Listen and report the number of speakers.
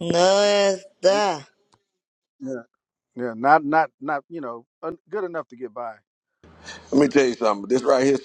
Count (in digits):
3